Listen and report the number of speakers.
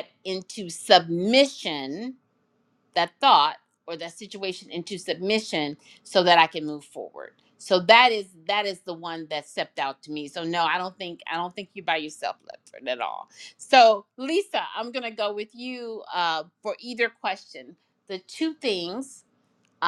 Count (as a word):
one